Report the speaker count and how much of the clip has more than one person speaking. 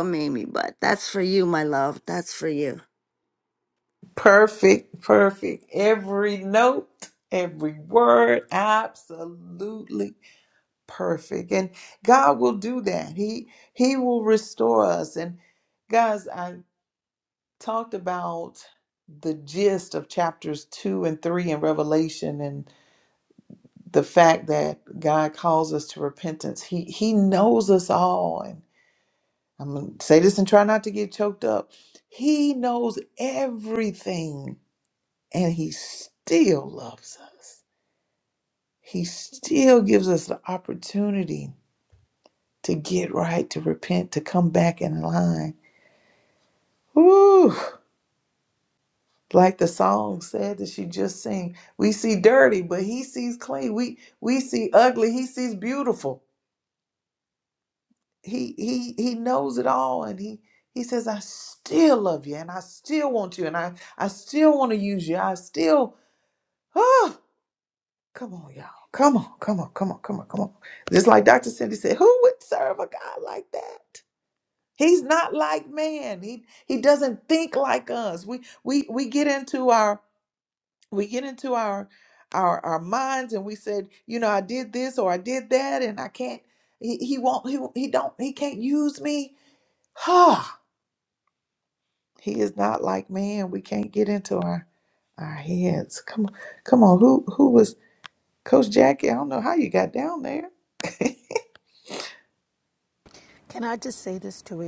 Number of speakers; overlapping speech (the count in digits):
3, no overlap